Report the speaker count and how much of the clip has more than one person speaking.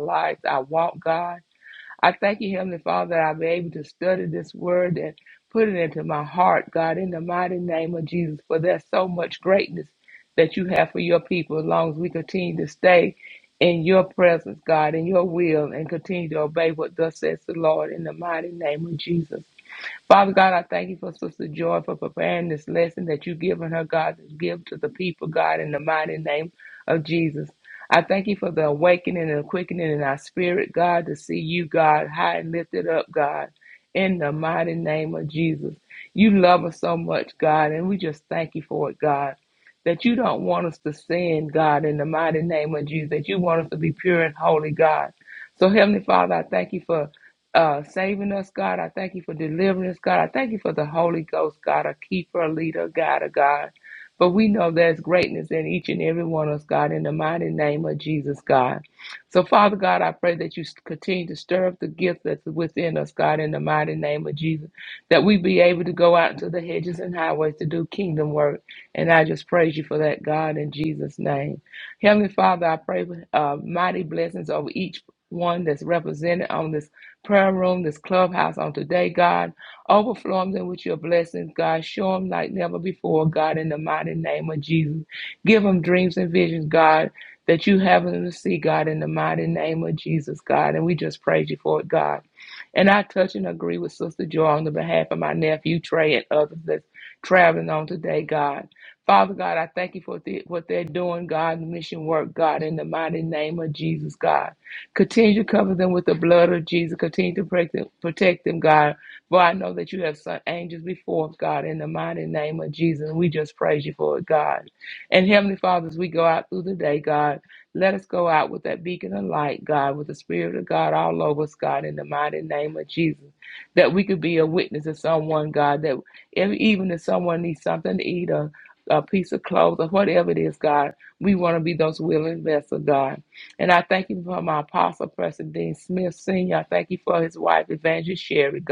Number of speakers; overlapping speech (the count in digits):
1, no overlap